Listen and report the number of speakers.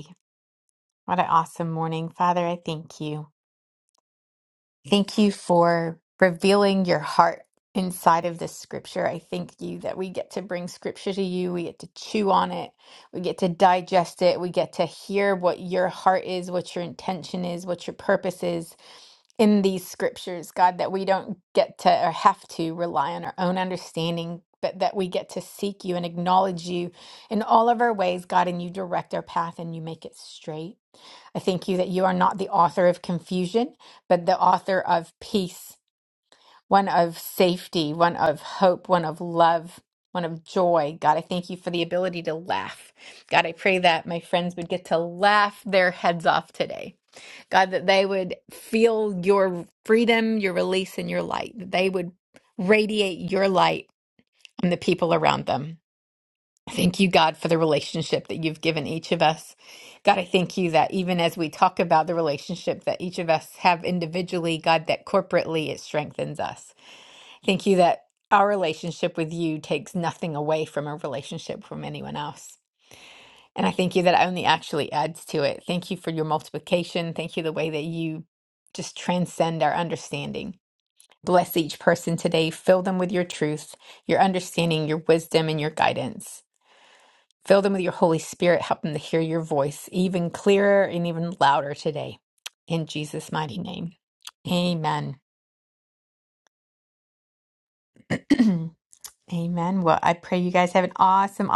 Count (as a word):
one